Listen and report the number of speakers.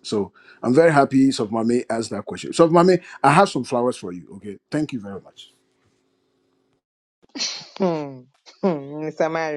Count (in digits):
2